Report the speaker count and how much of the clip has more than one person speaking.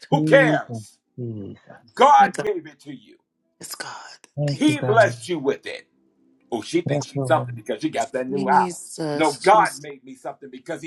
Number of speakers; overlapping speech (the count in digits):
3, about 28%